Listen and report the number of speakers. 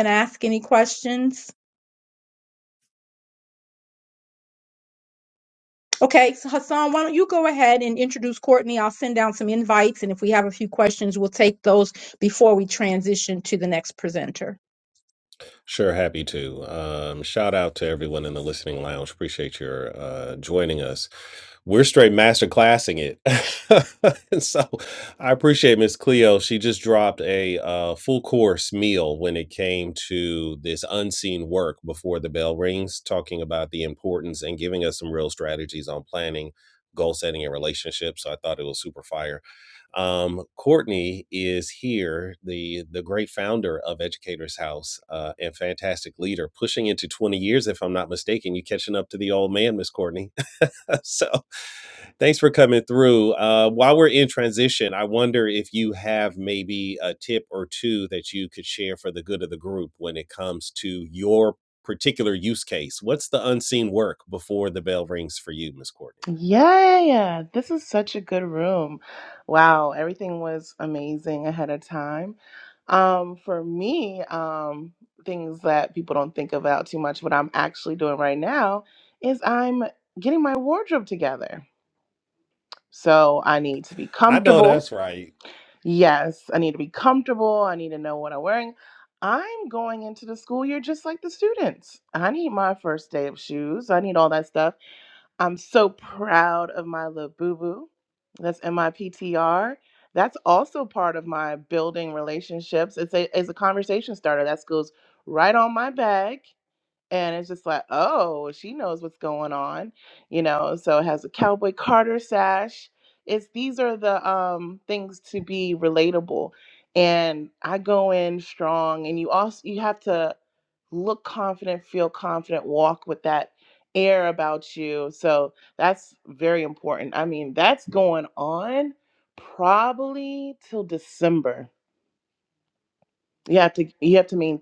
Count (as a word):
three